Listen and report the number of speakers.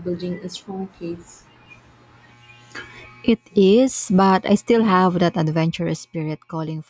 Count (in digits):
2